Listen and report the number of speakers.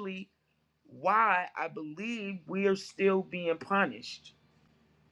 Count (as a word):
one